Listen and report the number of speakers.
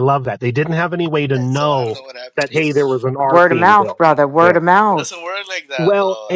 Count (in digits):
3